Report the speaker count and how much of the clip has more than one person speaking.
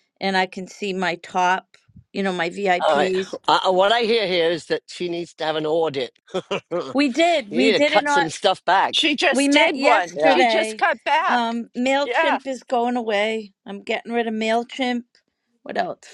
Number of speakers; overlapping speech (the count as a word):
three, about 21%